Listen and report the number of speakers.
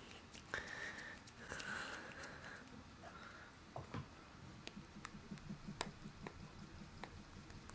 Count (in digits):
0